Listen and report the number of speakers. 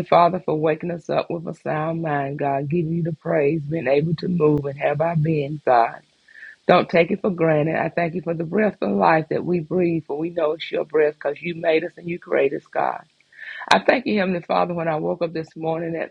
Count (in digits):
1